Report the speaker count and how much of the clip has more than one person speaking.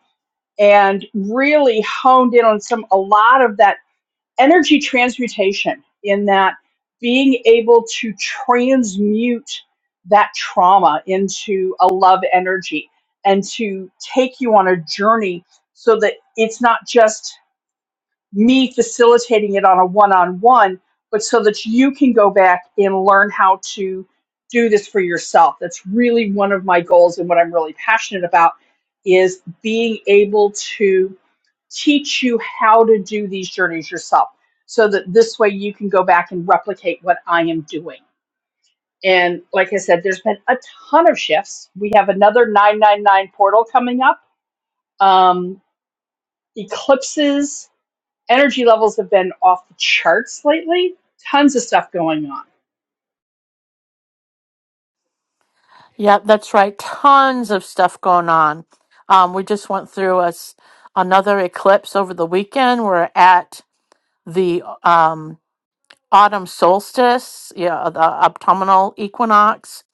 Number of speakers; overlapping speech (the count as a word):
two, no overlap